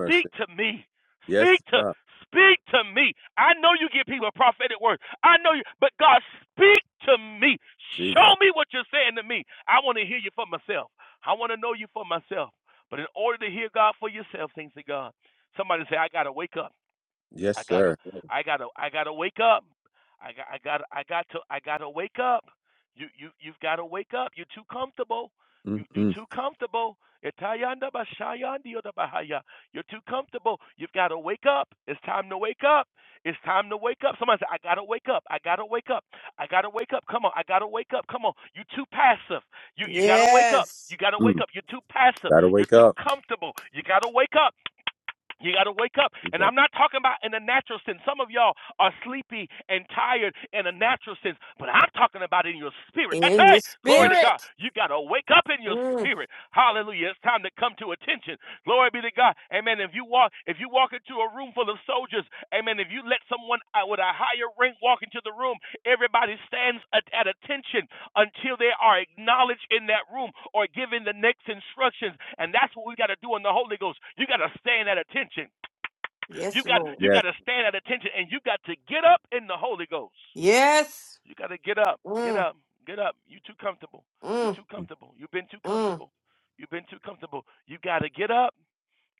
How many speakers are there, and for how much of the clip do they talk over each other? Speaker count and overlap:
3, about 7%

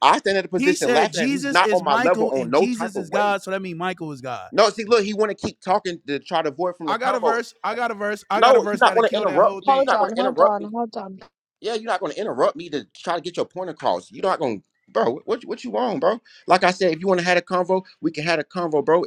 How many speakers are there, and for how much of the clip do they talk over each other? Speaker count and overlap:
3, about 29%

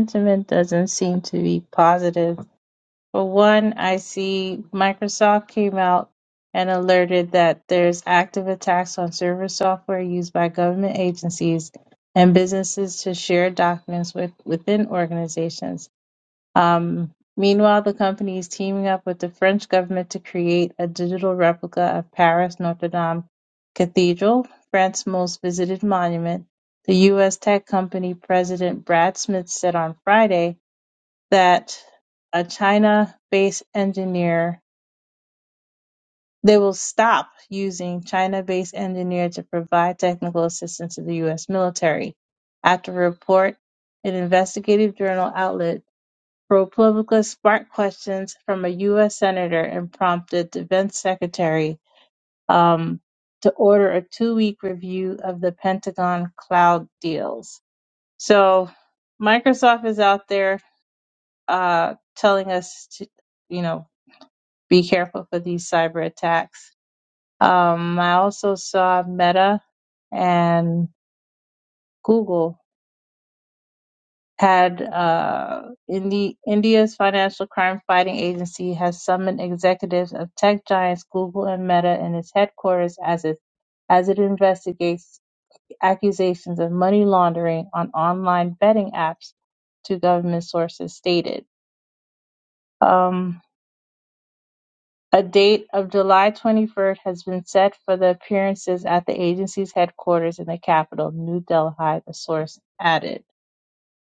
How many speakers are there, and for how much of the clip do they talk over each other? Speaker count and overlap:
1, no overlap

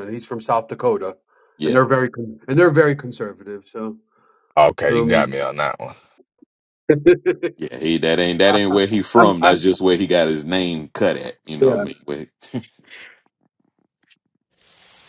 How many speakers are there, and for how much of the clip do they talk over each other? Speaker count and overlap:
3, about 8%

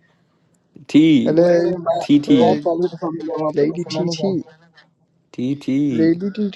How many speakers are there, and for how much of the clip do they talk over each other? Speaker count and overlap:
3, about 23%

